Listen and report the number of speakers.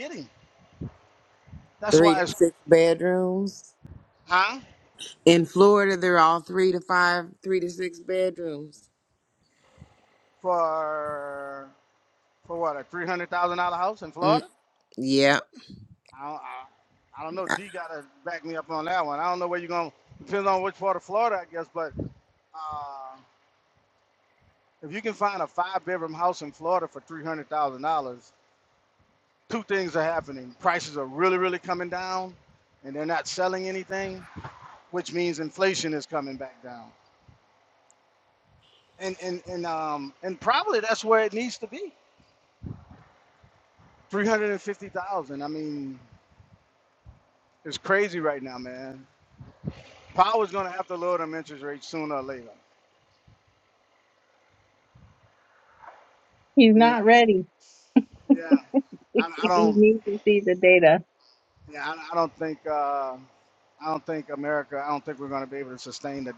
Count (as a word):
three